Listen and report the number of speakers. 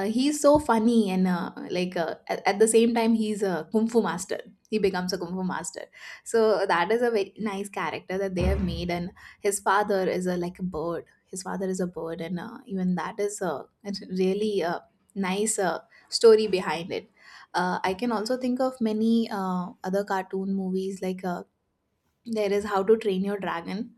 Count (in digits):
1